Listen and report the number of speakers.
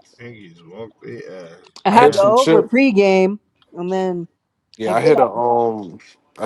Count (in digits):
3